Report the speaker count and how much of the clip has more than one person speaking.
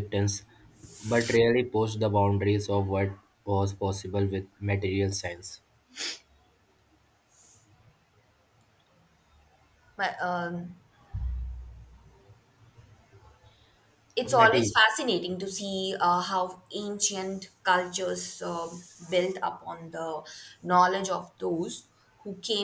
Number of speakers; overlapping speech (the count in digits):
2, about 2%